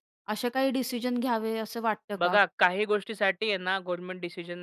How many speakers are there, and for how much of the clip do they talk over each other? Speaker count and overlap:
2, about 4%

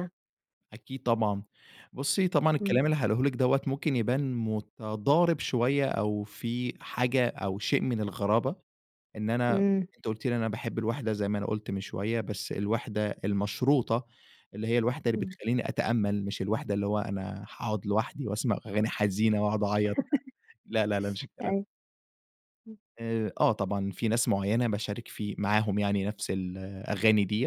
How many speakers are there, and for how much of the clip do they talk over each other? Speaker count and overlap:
2, about 2%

